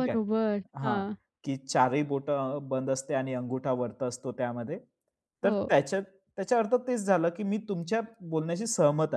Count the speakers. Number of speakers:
2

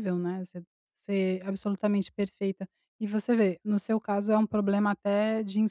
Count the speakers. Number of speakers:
1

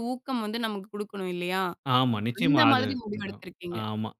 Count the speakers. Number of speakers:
2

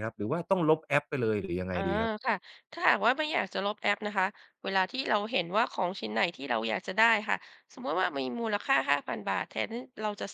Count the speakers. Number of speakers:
2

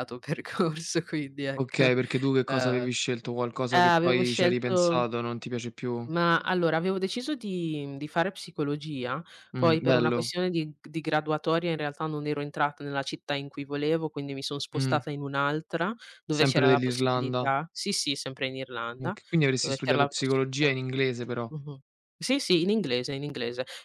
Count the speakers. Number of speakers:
2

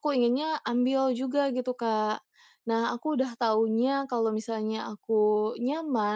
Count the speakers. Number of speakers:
1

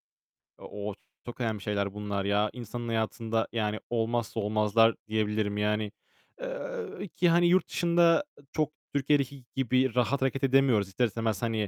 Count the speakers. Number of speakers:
1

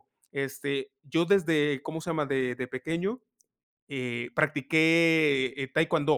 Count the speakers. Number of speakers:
1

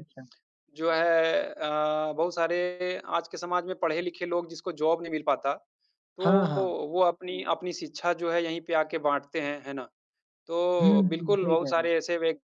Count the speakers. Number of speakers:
2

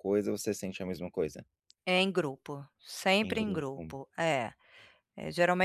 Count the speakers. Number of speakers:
2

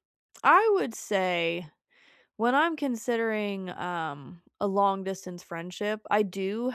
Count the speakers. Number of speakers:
1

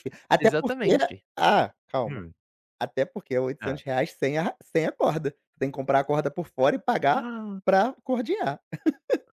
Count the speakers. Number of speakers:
2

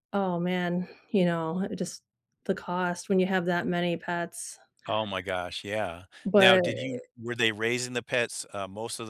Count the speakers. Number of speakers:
2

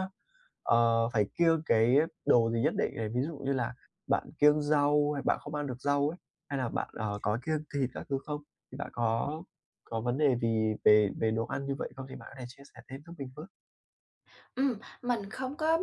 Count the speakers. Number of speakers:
2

